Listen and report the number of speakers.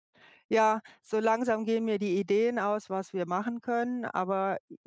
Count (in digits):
1